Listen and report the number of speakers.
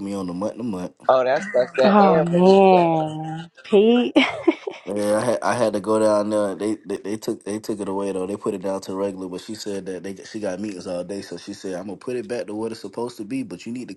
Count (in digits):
3